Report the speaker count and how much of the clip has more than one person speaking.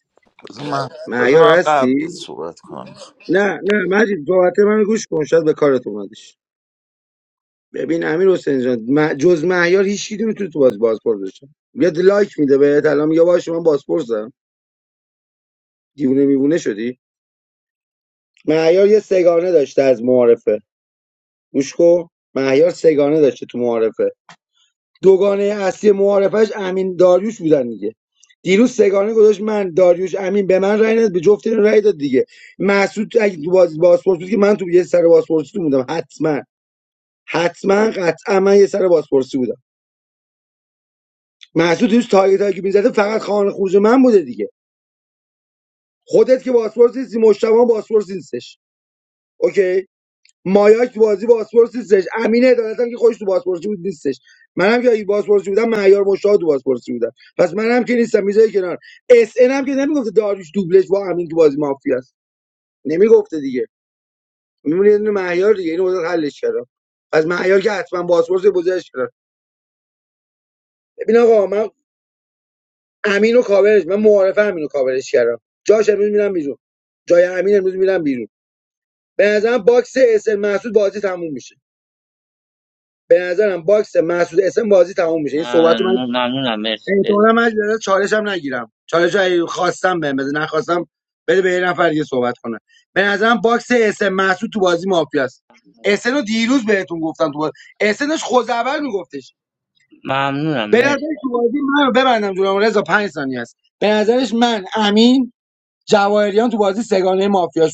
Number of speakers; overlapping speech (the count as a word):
three, about 2%